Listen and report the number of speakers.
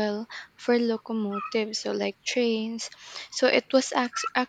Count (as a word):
one